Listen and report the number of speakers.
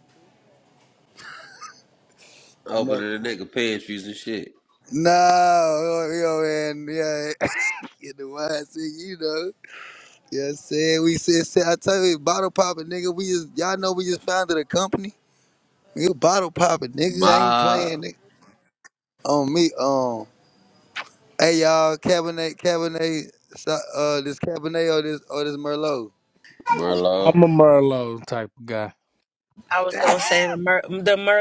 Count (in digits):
4